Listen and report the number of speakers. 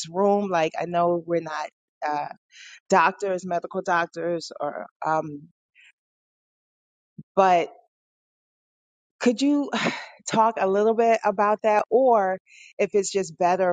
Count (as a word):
one